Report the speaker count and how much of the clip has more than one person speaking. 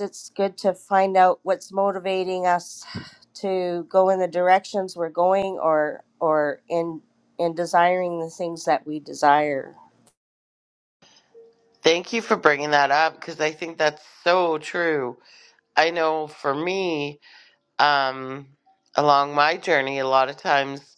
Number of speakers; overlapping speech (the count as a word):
two, no overlap